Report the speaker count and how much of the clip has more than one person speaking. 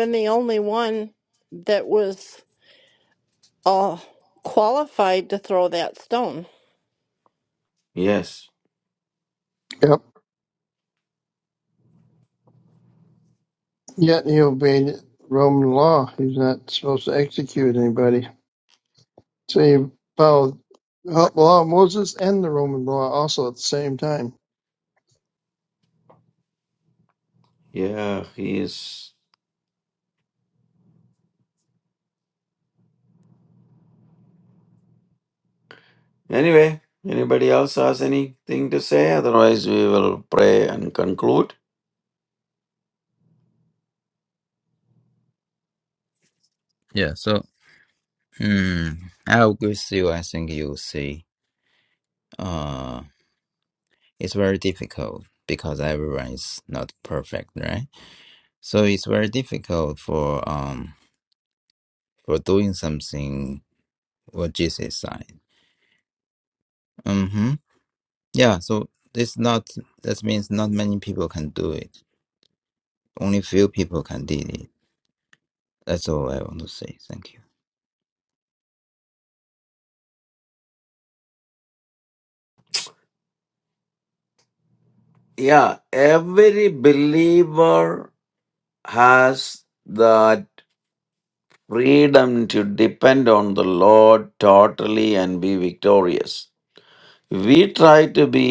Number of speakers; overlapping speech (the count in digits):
4, no overlap